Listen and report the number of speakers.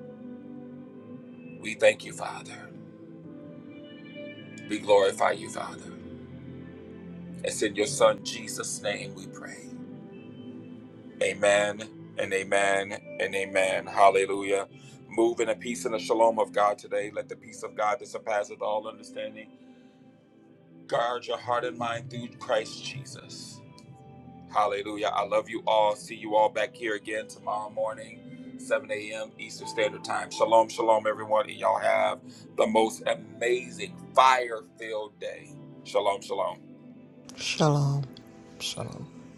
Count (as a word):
two